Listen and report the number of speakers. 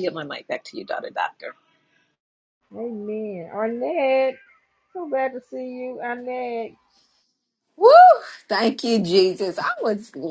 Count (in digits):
3